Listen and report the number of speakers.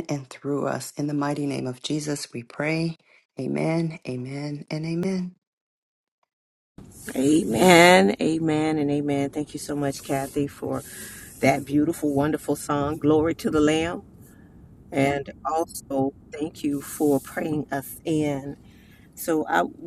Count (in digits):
2